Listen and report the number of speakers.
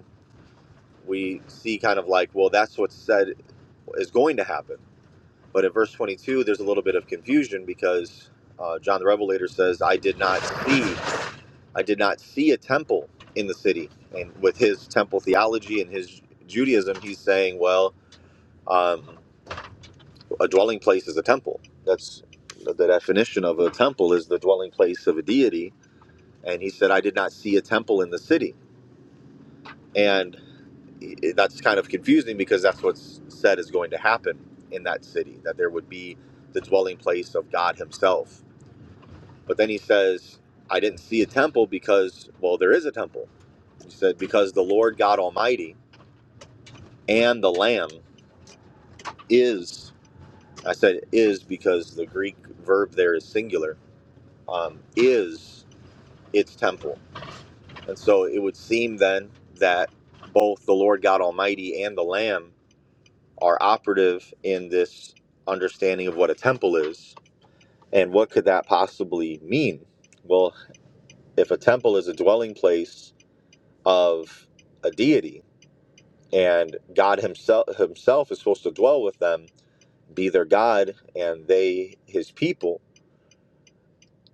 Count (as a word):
one